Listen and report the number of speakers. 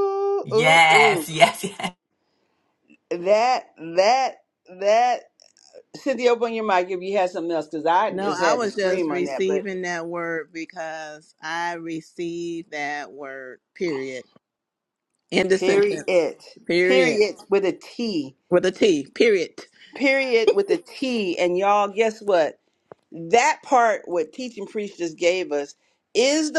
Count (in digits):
3